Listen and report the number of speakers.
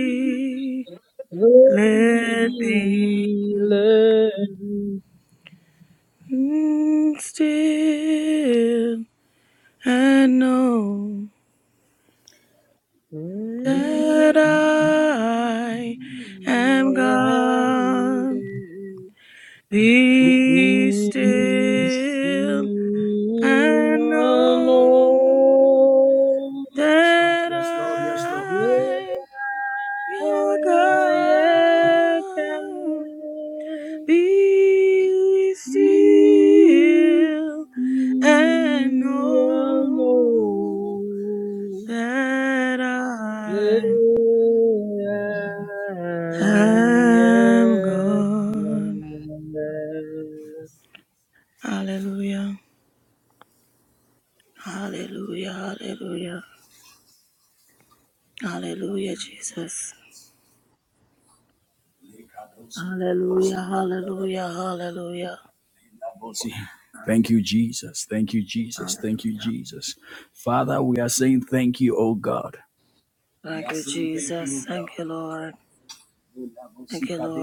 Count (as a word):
three